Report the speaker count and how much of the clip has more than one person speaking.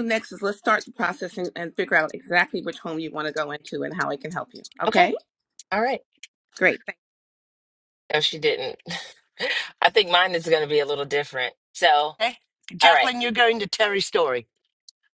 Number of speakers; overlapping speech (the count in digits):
3, about 3%